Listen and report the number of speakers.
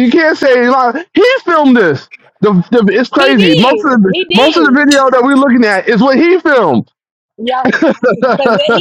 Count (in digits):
2